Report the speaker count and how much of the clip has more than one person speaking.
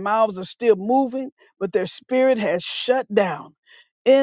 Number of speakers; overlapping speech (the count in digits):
1, no overlap